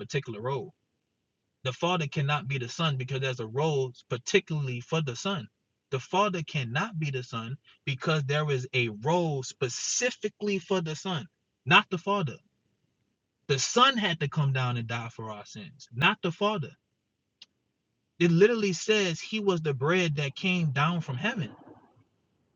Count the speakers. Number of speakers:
1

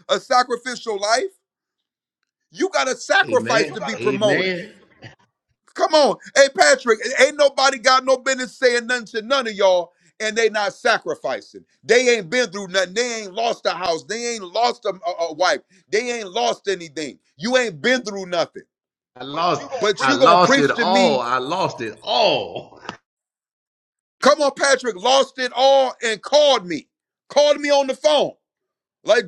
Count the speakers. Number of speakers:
2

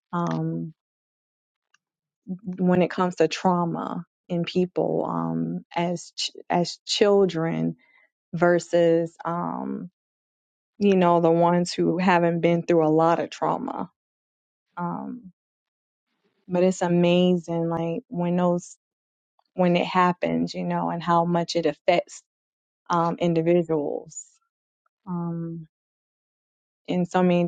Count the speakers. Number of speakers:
1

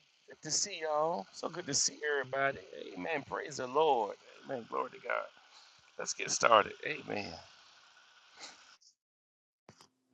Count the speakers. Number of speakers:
1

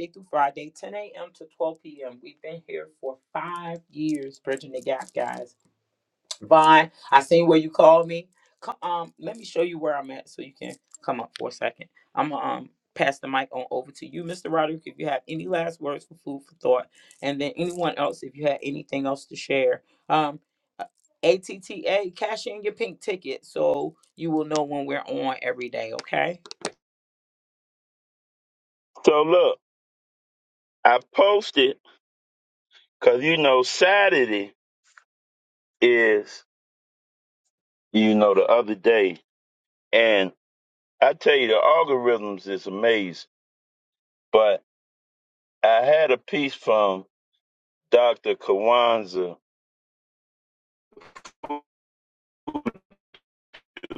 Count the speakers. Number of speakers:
2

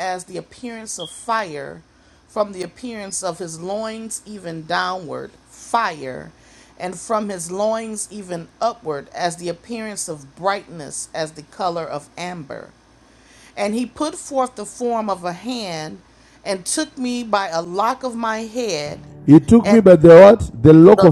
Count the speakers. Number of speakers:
2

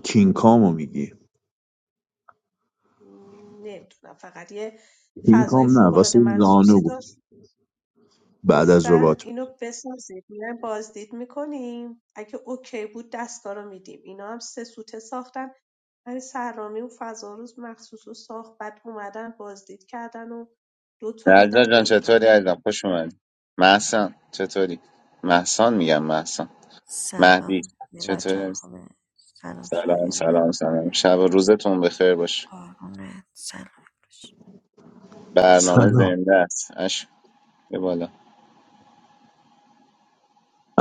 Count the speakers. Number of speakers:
4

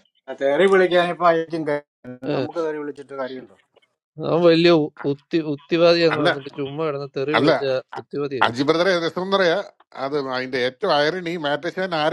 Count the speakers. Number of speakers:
3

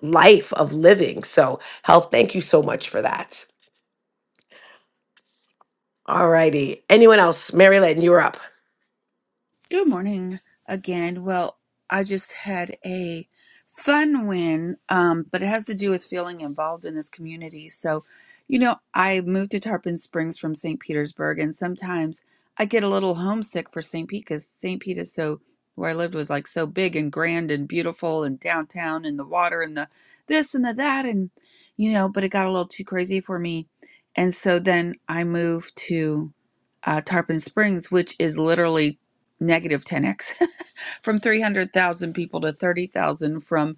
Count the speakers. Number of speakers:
2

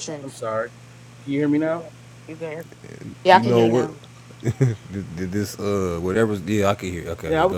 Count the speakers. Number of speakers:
3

